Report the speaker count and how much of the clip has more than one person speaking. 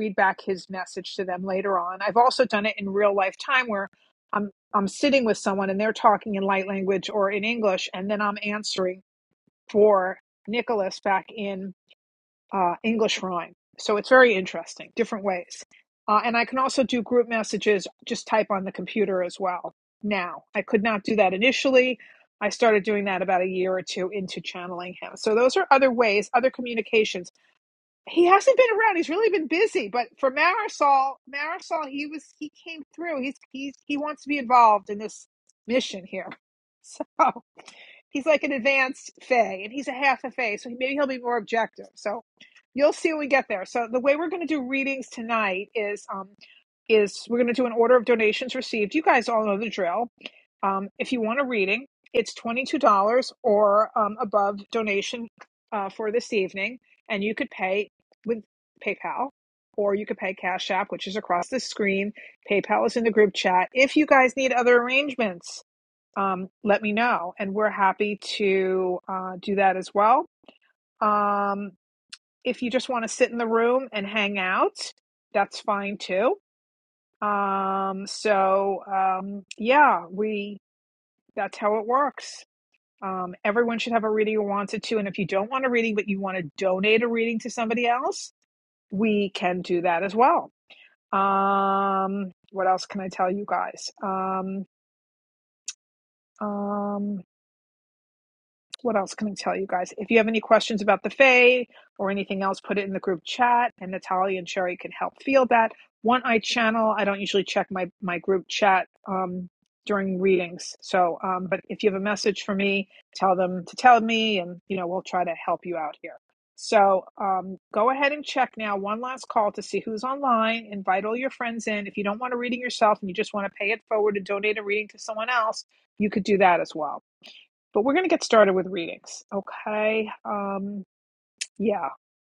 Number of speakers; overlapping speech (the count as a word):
one, no overlap